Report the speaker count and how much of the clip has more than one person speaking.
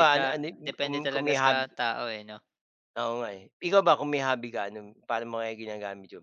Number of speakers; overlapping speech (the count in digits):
2, about 20%